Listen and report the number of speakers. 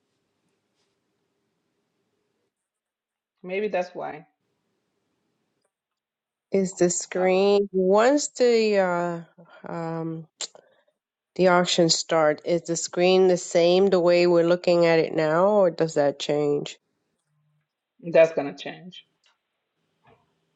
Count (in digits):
2